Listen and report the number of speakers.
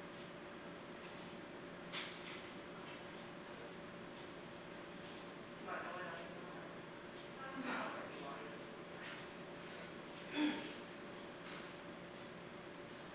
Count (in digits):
1